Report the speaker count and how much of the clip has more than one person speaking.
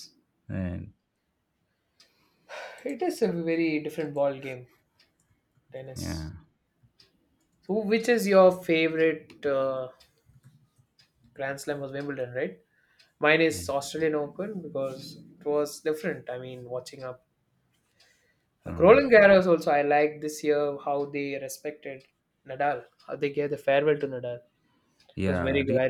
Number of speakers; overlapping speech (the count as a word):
two, about 4%